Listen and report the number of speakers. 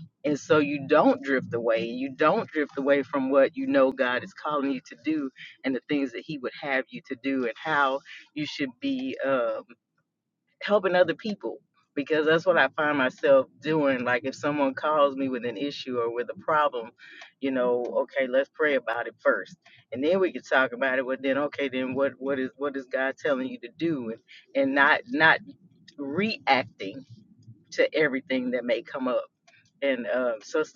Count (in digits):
1